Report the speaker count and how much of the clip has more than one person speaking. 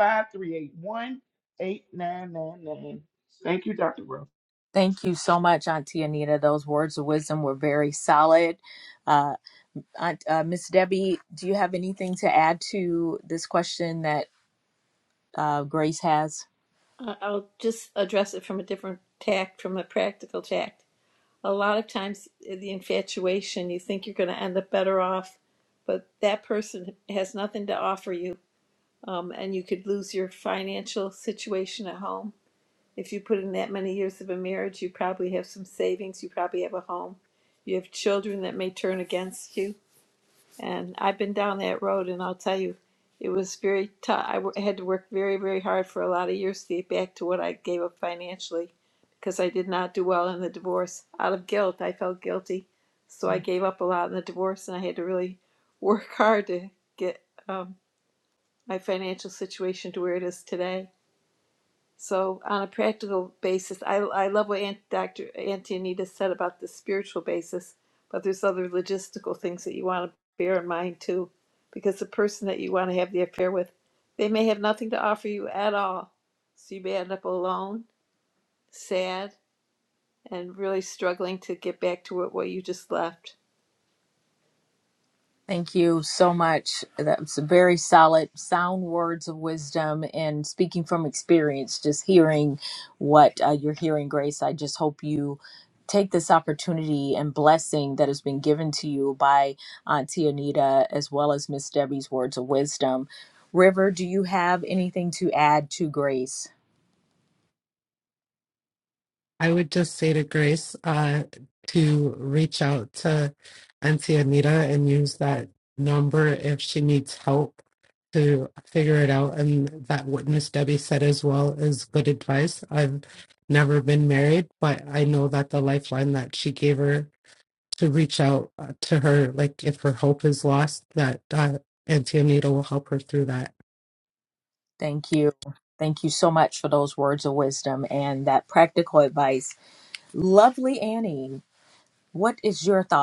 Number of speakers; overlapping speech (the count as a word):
four, under 1%